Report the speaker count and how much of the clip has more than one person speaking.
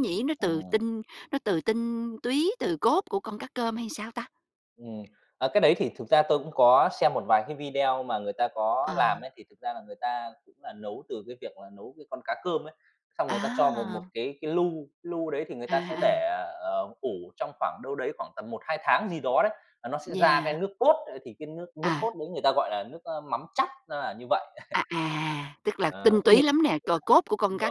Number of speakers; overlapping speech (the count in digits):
2, about 12%